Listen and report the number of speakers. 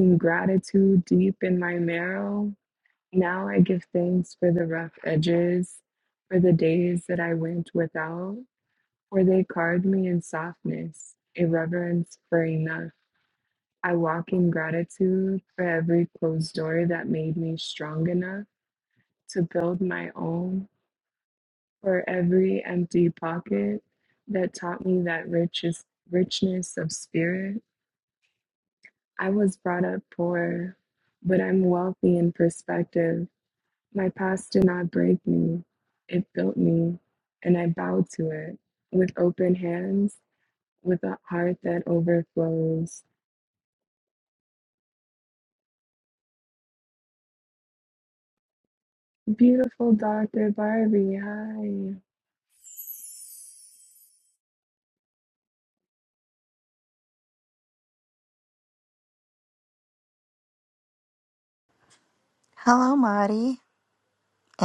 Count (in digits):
2